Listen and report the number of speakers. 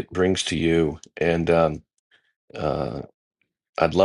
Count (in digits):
1